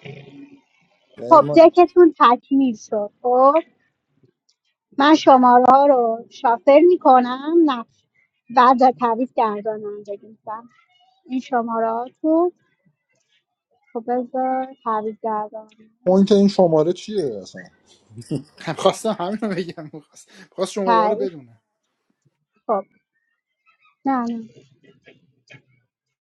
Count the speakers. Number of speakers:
3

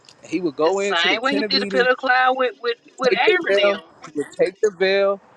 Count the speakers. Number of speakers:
2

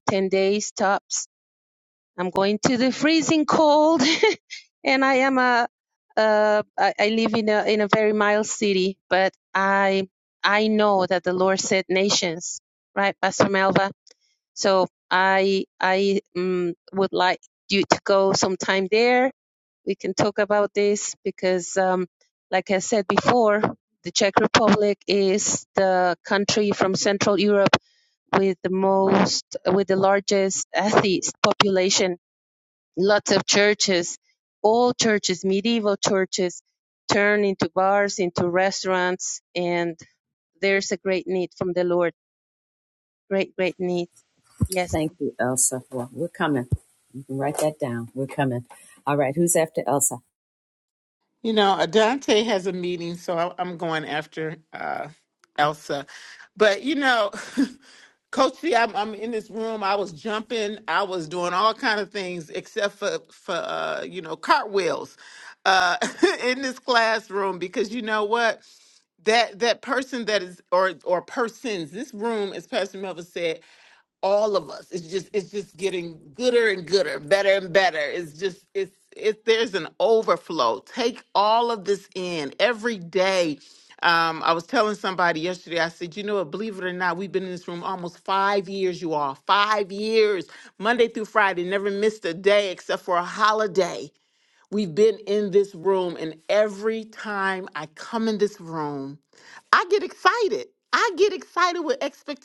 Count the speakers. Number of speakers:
3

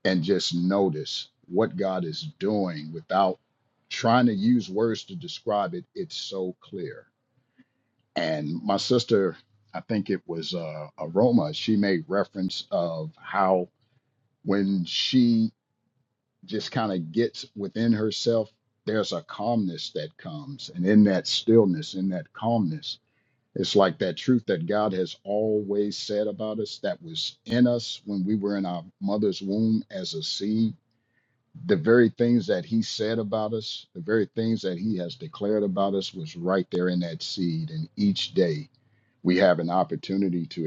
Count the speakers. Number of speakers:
1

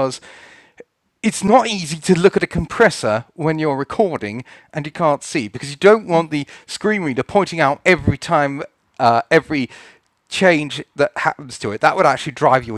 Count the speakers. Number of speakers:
1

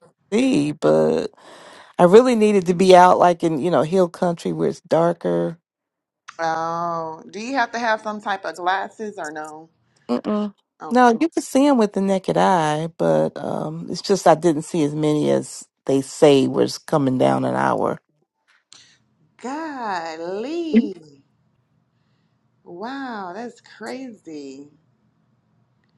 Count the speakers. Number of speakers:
2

